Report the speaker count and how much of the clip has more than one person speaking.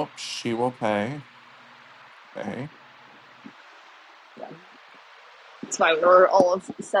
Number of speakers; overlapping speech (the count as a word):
two, no overlap